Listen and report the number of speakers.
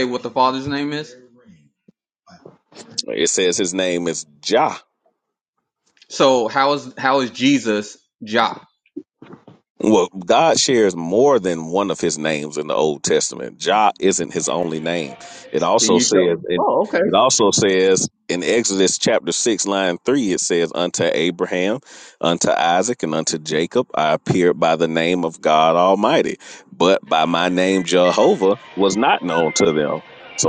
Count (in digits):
2